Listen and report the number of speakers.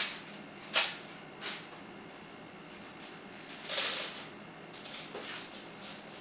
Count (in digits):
0